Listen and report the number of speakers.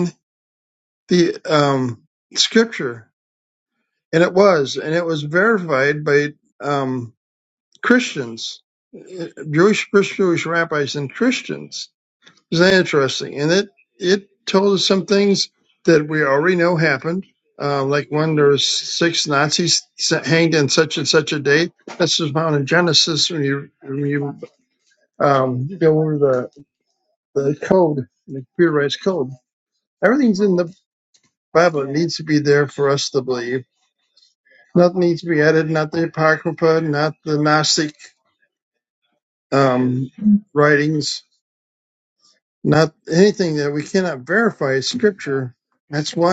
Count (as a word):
one